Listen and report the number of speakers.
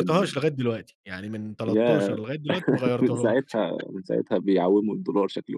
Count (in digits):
2